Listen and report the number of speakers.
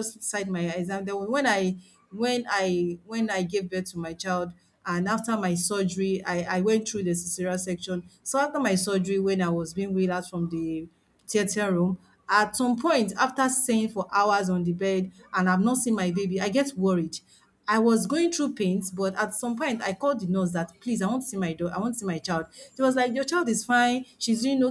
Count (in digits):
1